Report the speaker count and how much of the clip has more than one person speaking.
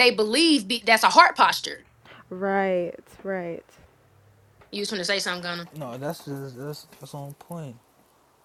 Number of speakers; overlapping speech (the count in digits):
3, no overlap